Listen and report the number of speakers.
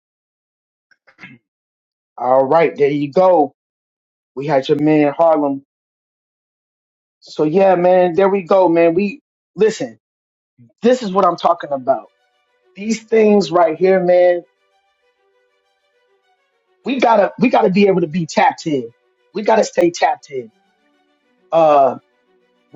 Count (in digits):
1